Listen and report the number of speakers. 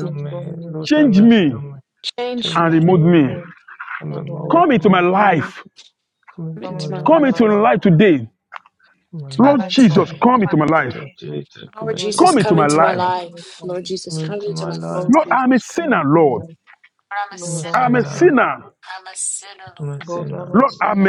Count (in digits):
4